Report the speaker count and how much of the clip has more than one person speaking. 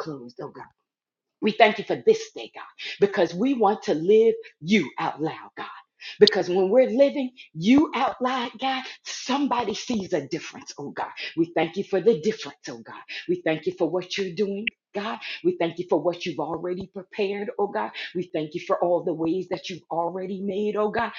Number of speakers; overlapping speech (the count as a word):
one, no overlap